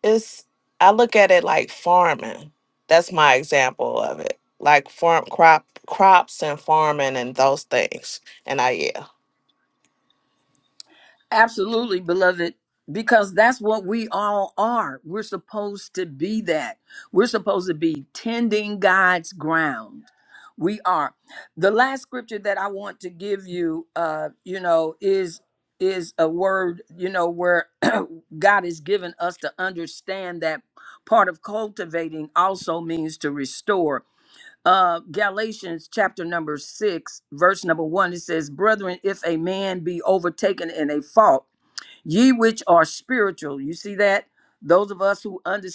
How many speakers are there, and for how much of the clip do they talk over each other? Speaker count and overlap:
2, no overlap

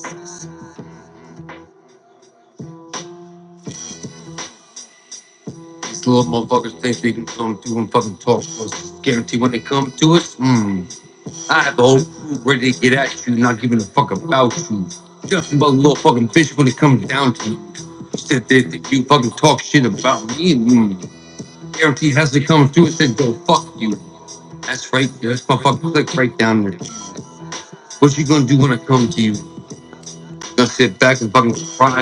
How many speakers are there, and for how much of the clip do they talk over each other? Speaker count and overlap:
1, no overlap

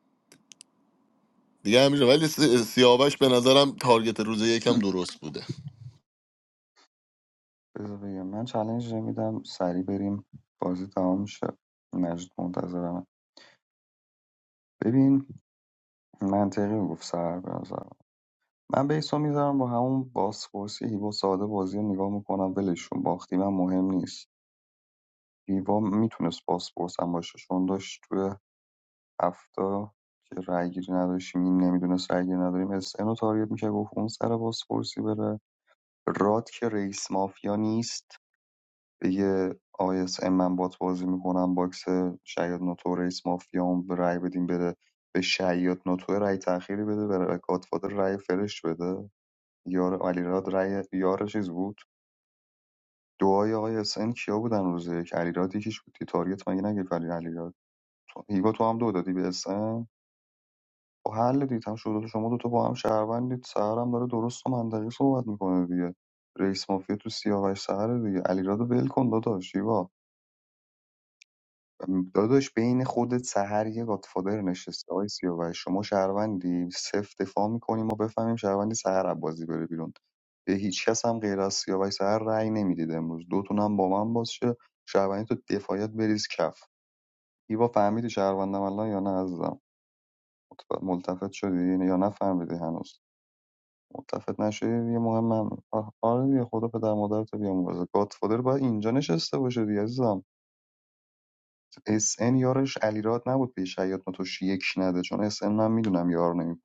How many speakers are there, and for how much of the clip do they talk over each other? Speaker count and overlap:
2, no overlap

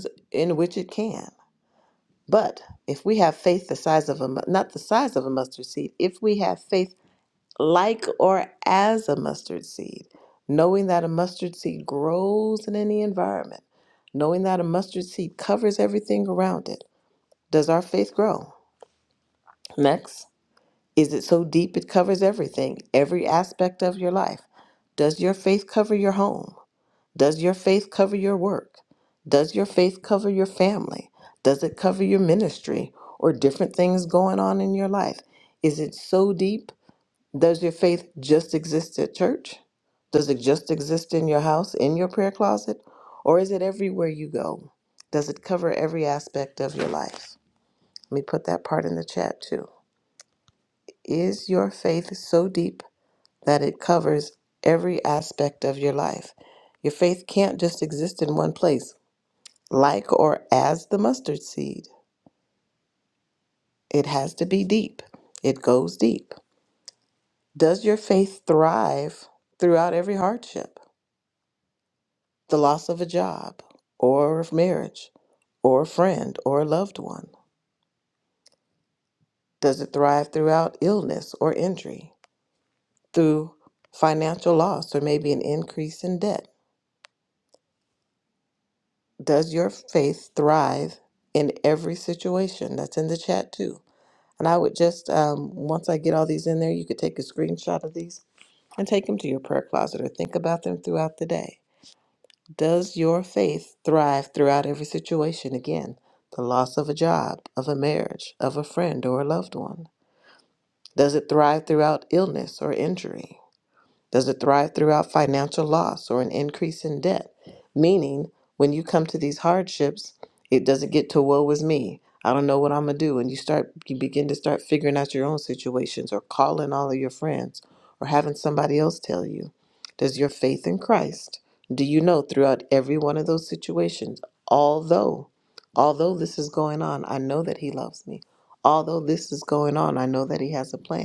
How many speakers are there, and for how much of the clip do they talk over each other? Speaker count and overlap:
1, no overlap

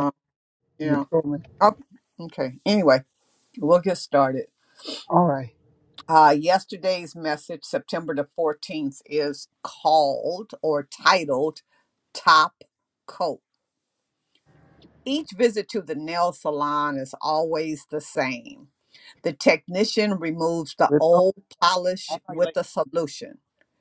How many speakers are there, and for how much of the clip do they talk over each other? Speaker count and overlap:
2, about 4%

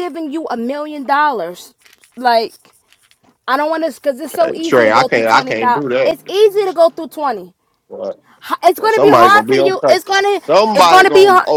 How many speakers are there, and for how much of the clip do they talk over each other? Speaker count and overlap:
2, about 35%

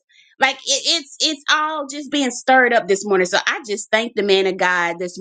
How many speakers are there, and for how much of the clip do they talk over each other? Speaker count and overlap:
1, no overlap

